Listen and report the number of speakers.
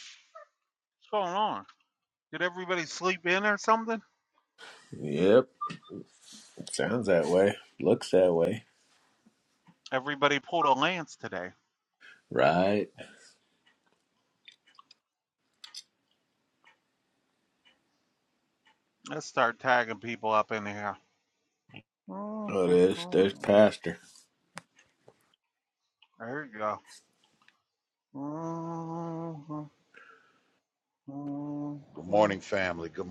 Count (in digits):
3